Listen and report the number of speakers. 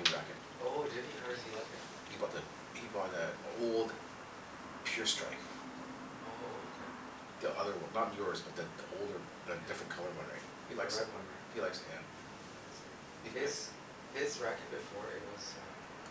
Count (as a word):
two